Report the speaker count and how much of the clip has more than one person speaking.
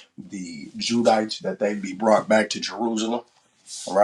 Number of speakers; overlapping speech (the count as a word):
one, no overlap